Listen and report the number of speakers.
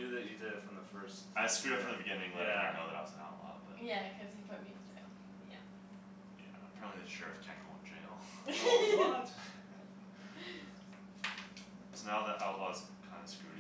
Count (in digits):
3